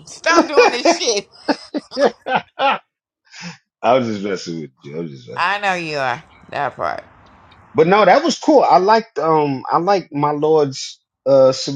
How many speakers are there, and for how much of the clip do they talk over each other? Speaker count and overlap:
2, under 1%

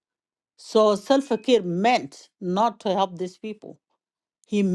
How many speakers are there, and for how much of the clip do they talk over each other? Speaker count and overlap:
1, no overlap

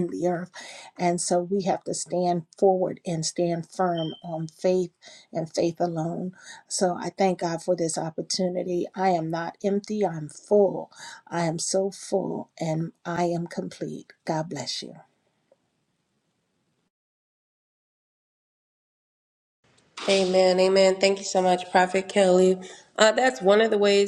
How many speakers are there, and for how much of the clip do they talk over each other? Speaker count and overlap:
2, no overlap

